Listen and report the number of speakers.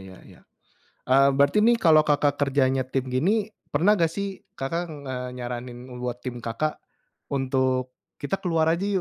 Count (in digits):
1